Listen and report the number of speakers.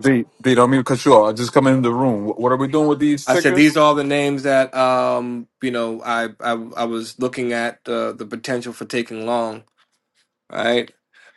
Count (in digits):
2